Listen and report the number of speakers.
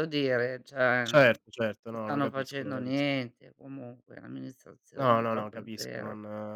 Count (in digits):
2